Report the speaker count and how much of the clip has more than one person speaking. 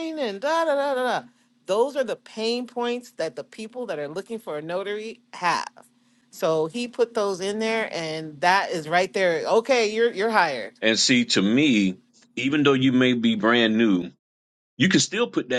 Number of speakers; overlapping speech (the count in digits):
2, no overlap